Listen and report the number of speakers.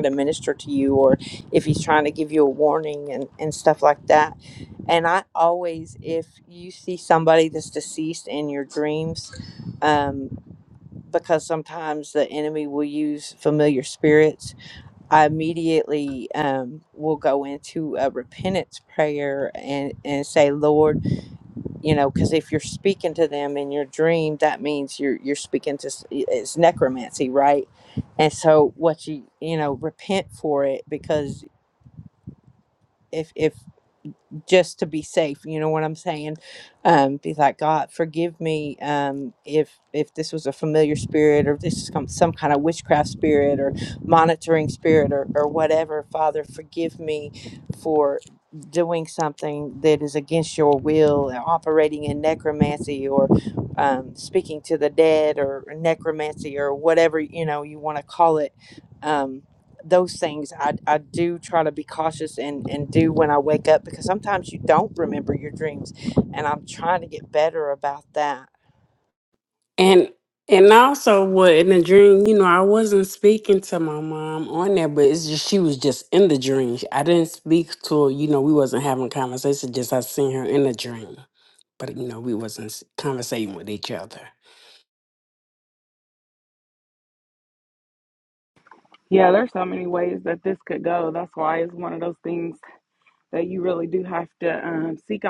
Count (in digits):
3